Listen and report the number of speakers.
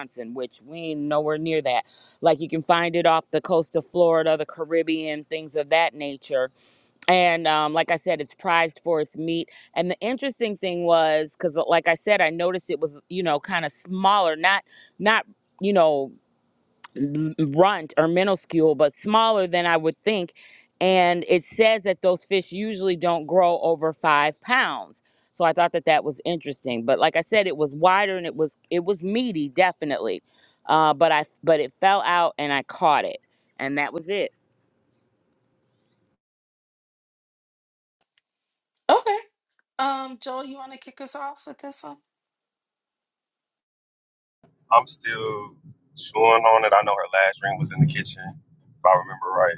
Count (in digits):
3